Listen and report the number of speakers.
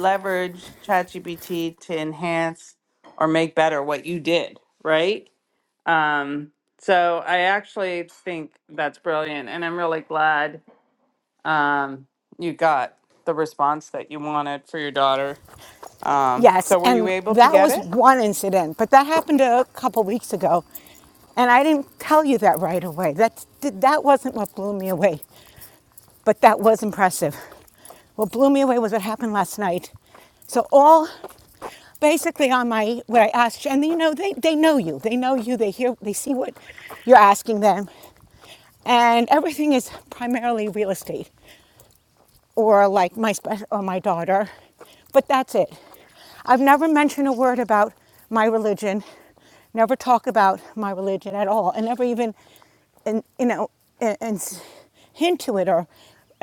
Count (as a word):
two